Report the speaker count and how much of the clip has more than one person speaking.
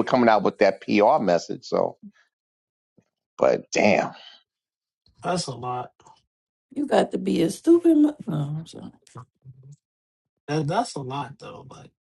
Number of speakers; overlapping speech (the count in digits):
3, no overlap